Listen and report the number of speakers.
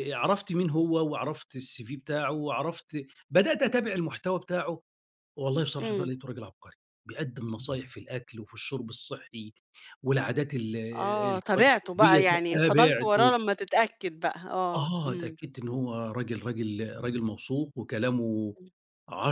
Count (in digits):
2